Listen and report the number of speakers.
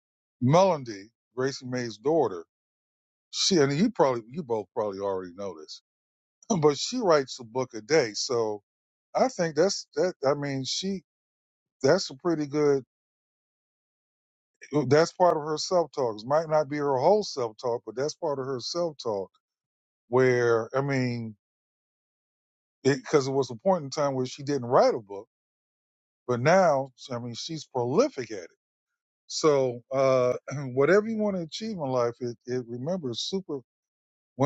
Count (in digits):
1